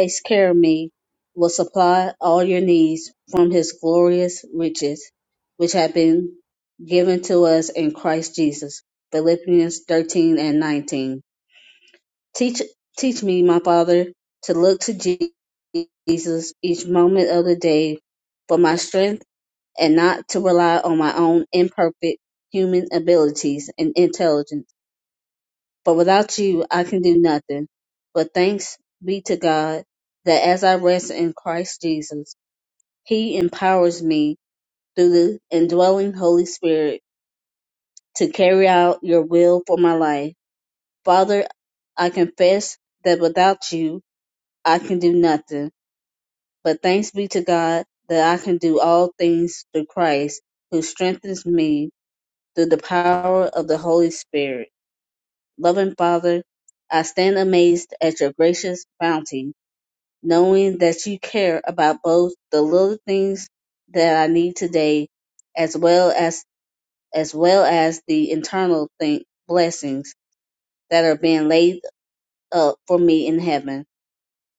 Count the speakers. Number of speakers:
one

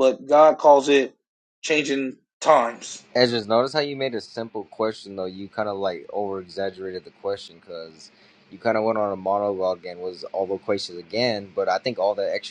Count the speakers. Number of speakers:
two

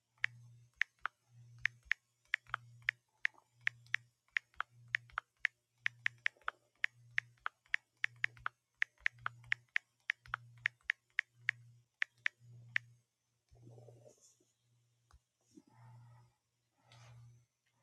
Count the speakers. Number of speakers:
zero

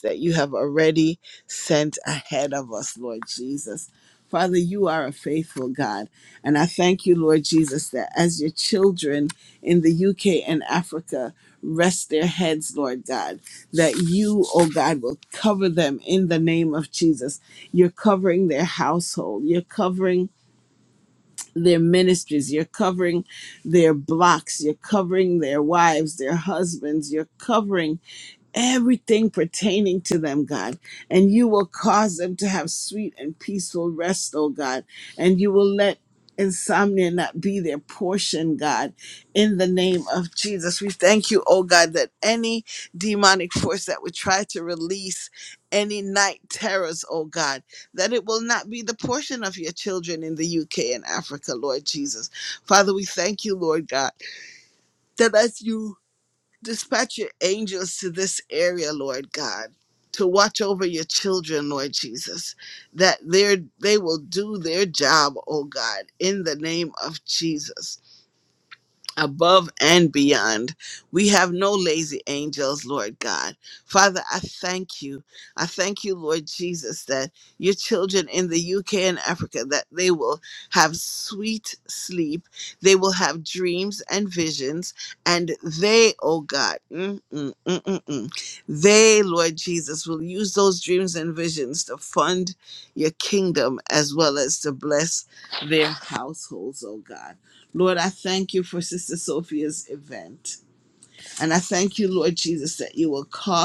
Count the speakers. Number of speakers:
one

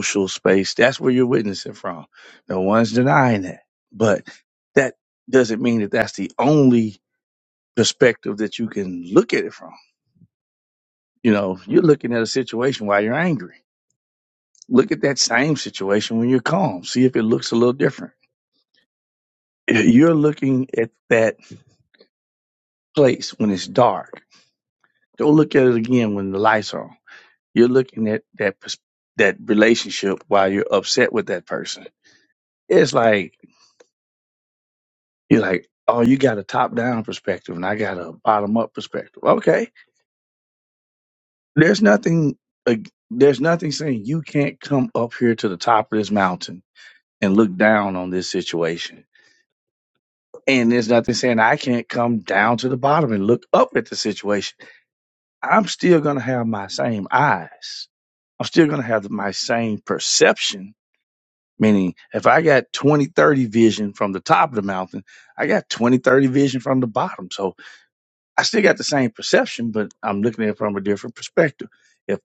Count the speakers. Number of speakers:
one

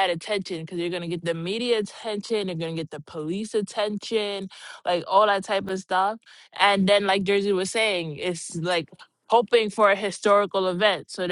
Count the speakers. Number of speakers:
one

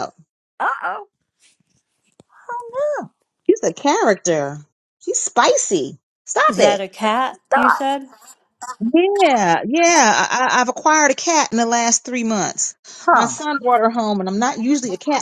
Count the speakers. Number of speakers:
three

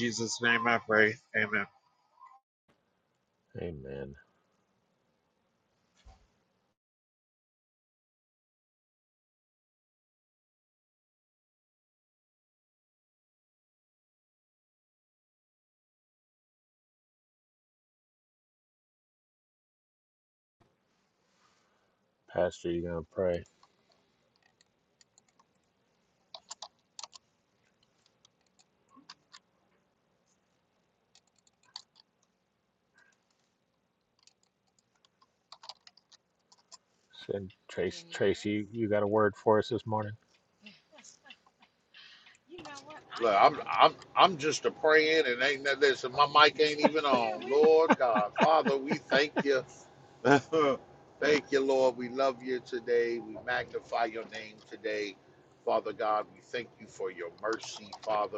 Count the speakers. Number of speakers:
four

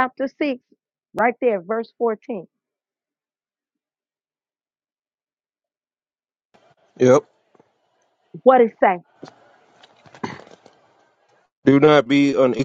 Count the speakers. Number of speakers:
two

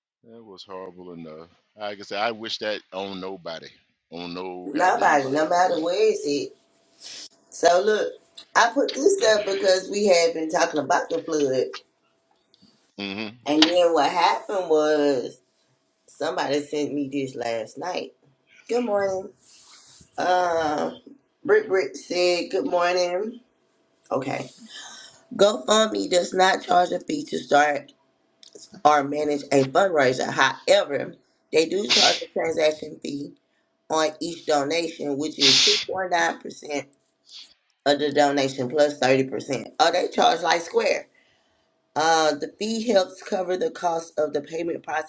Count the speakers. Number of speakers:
two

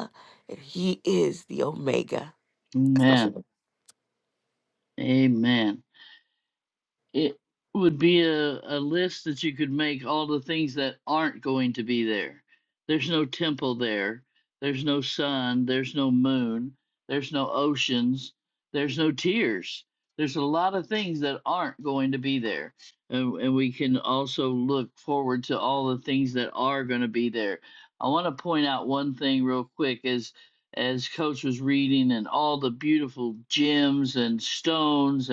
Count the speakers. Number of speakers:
two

